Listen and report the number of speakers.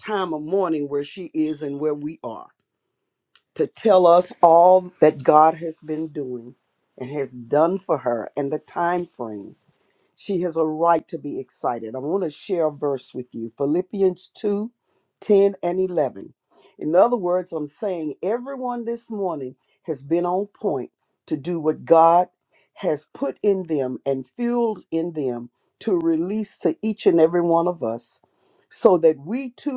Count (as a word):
one